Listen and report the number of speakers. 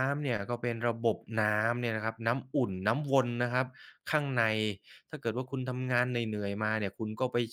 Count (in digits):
1